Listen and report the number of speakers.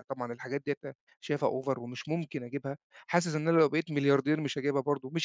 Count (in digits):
1